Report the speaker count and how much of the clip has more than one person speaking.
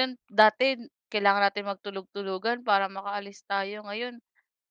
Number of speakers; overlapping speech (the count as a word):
one, no overlap